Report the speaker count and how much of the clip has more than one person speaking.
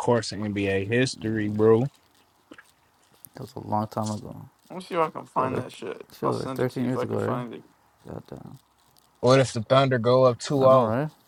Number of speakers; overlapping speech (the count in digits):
3, about 20%